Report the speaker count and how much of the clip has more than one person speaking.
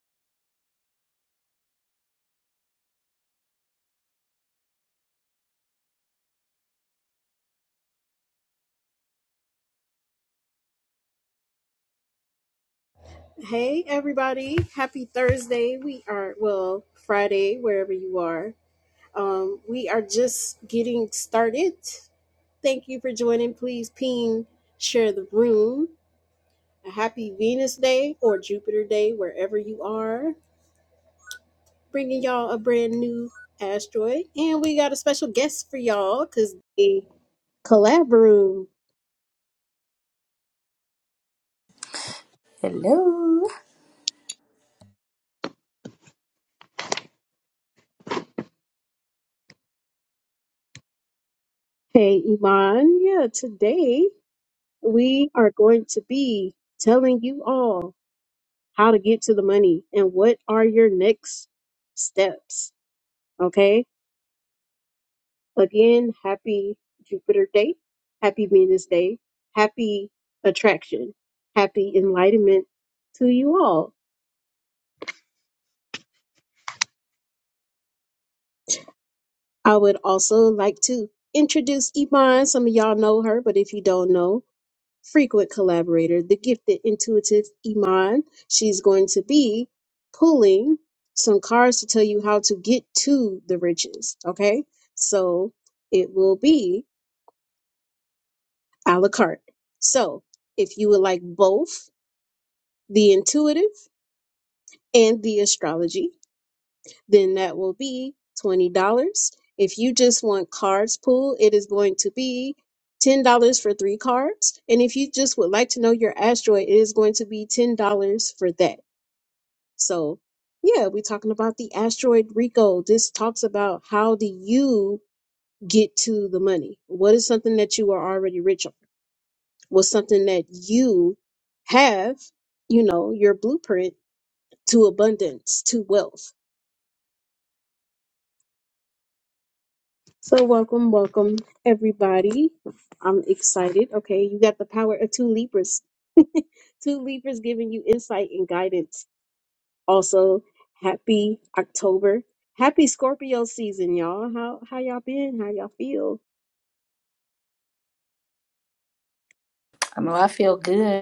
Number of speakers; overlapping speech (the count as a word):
two, no overlap